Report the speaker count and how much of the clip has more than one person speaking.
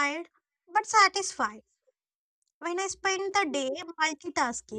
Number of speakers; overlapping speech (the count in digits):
1, no overlap